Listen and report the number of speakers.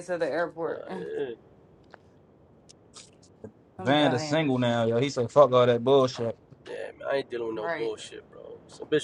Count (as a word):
three